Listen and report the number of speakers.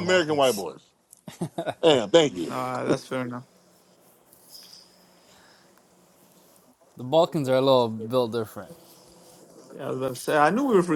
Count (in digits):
3